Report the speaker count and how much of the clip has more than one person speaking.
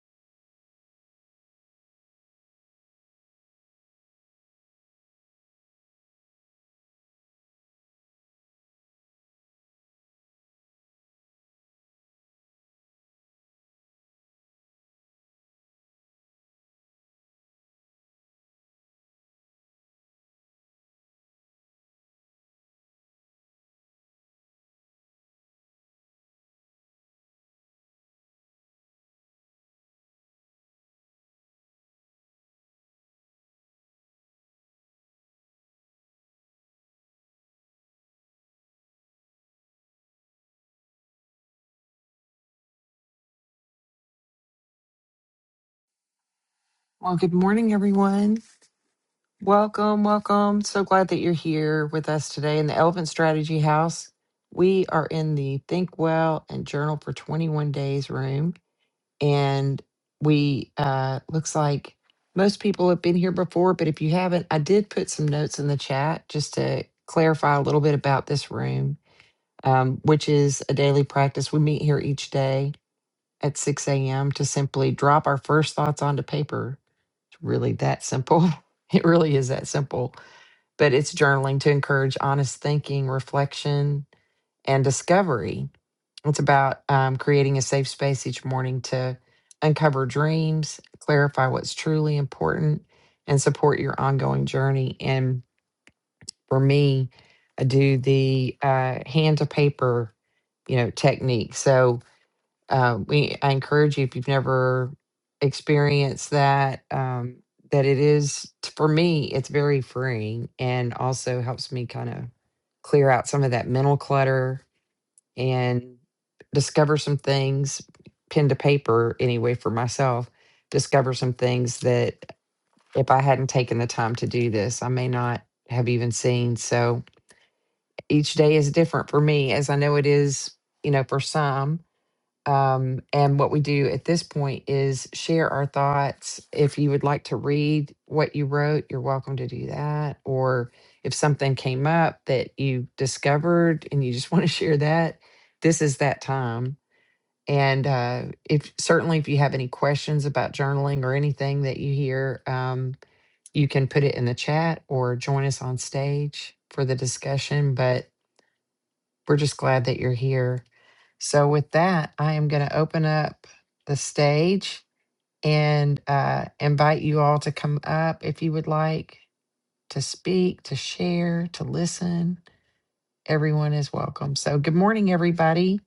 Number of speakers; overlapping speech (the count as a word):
one, no overlap